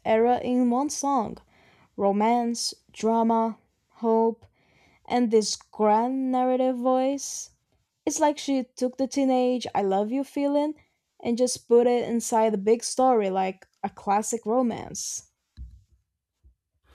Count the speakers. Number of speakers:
one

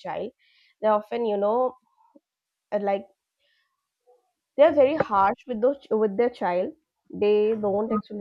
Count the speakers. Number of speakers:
one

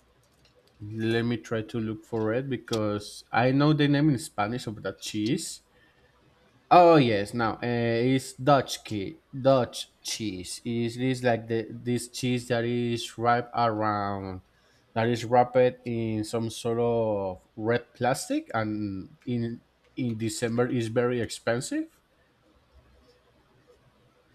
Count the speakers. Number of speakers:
one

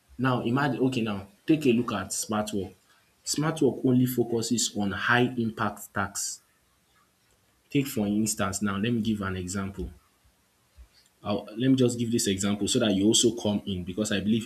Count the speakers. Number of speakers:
one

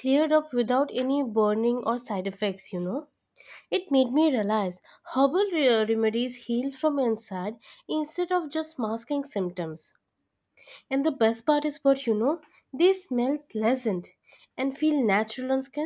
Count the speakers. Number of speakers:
one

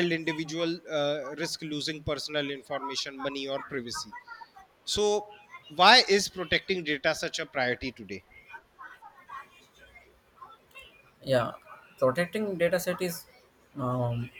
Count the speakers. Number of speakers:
two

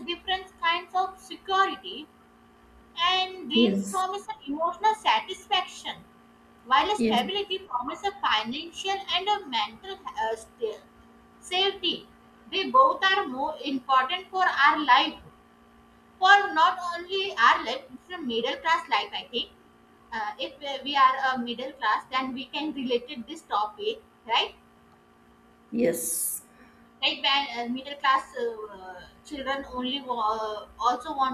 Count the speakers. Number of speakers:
two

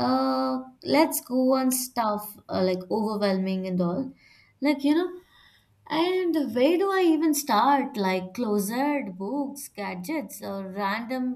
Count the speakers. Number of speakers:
one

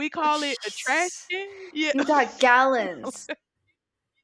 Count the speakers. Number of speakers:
two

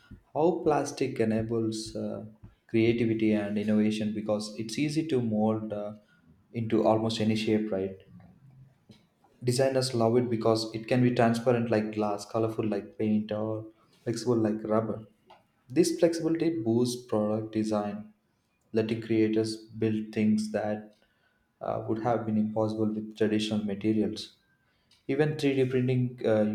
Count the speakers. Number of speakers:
one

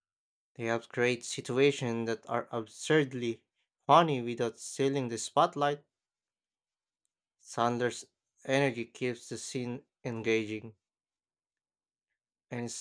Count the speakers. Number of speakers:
one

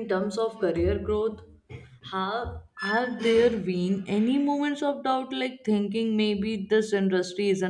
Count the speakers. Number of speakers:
one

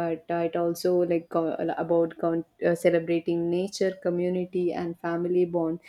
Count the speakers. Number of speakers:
one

